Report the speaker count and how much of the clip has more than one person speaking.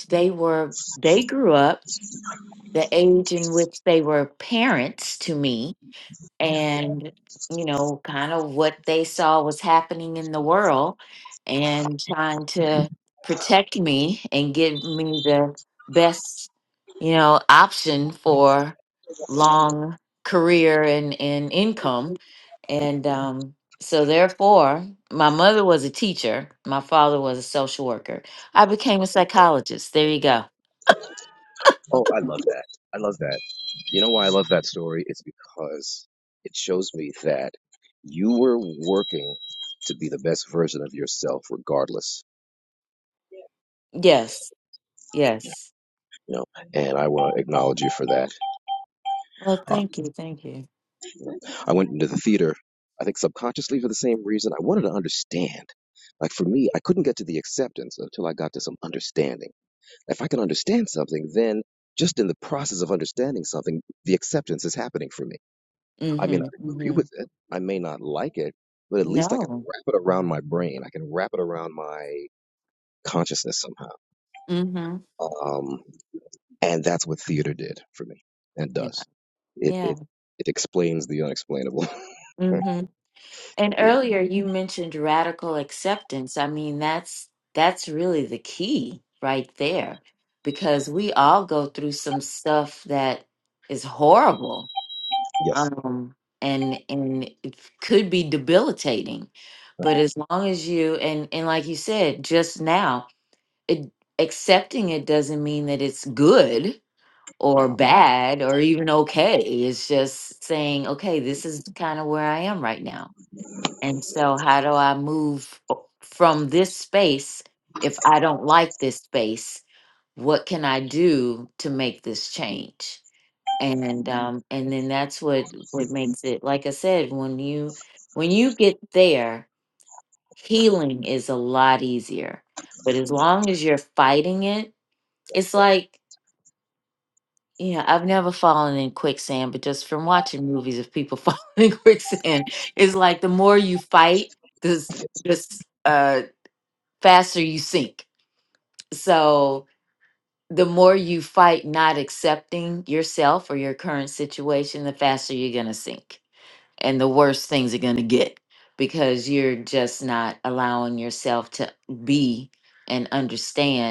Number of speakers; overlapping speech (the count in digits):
2, about 1%